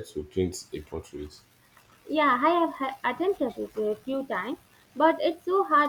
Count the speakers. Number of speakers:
2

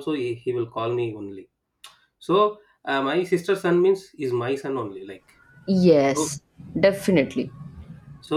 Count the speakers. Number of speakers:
2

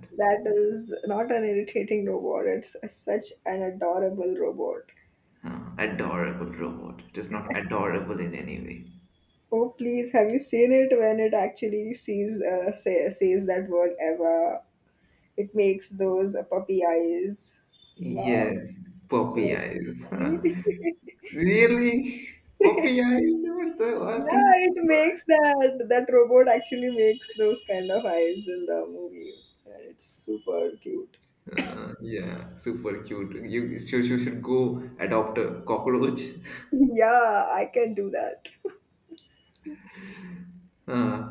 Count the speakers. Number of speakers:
2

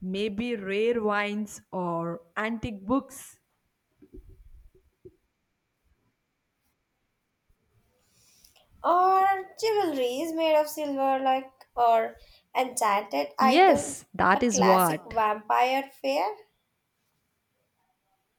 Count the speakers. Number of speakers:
2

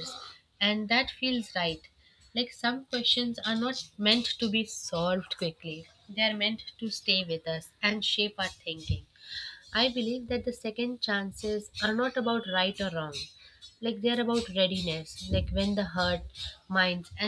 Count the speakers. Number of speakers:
1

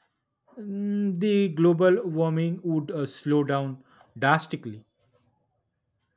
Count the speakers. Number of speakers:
1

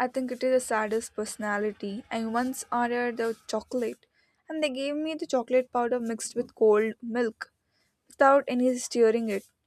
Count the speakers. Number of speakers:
1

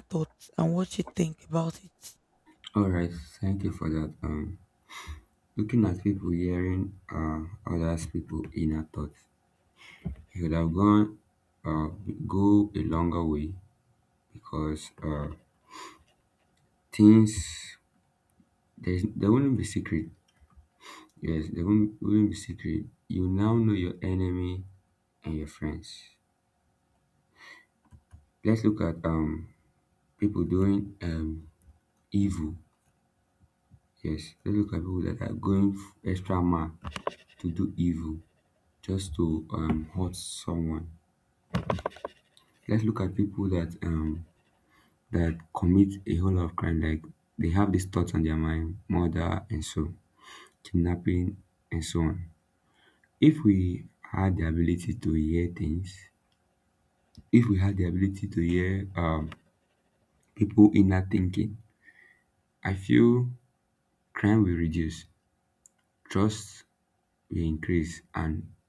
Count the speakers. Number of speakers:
2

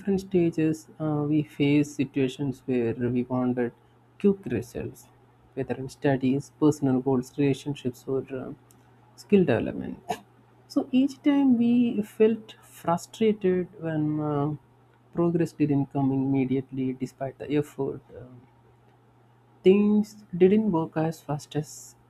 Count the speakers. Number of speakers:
1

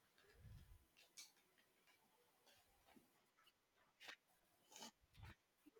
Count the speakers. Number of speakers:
0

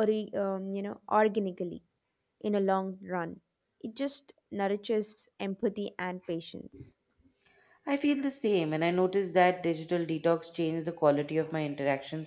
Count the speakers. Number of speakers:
2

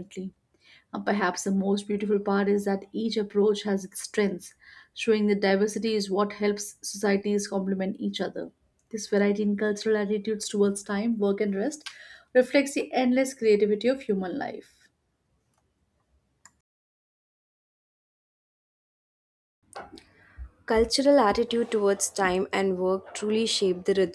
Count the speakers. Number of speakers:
2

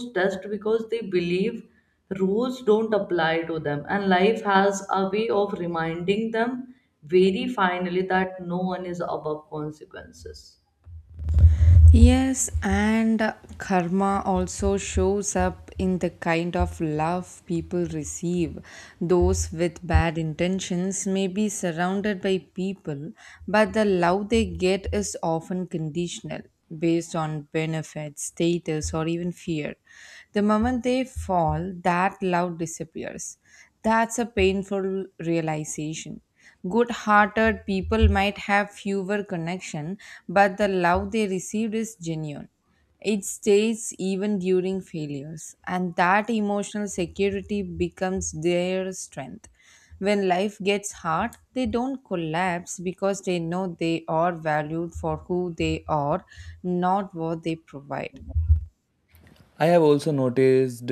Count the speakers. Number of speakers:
3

